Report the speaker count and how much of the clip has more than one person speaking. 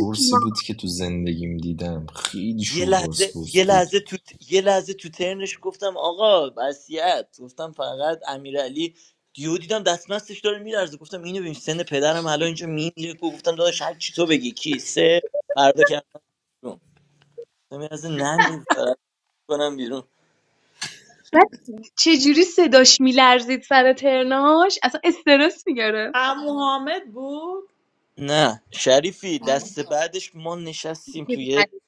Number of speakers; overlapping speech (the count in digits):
4, about 7%